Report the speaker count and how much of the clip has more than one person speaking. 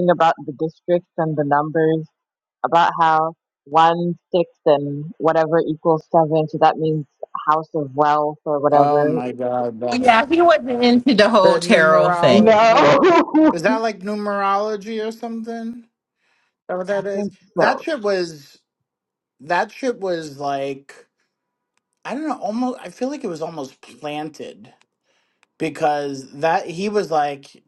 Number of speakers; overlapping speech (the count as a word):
three, about 8%